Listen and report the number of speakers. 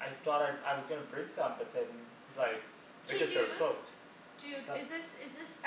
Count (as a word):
two